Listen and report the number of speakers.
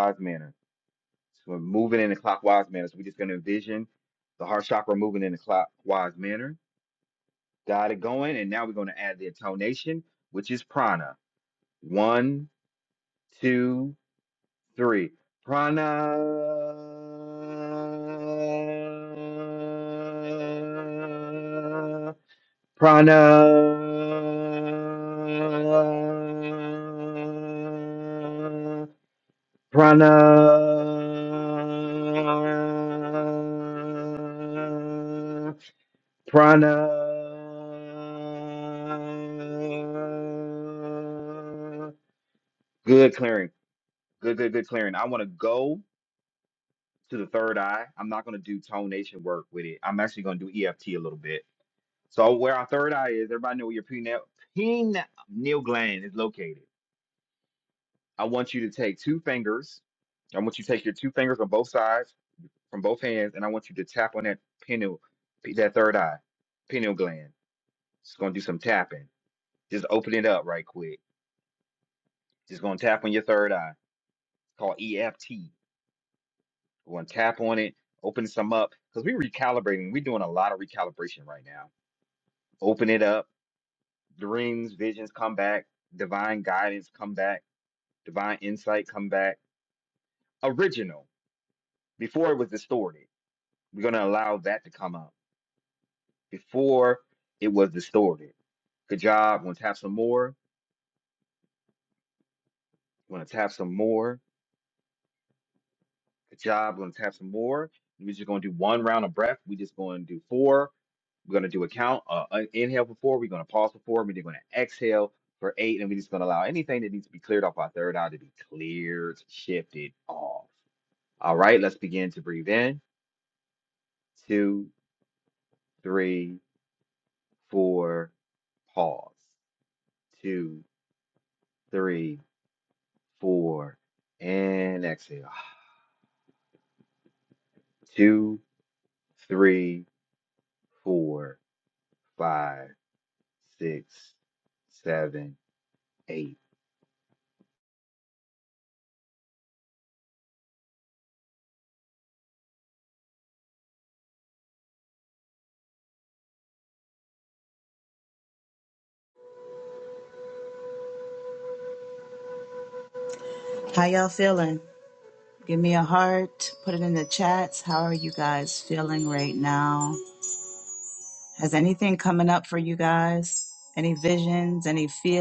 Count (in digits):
2